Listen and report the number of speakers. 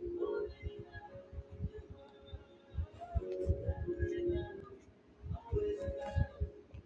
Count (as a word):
zero